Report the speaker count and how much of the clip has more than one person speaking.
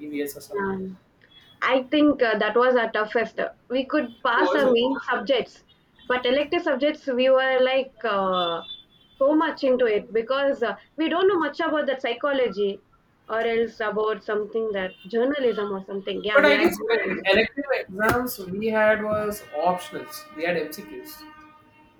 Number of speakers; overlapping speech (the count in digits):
2, about 7%